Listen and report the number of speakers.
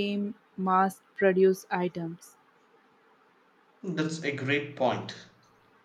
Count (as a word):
two